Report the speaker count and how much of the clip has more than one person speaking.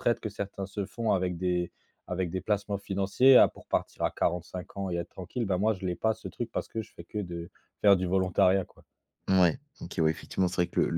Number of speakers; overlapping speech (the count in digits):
2, no overlap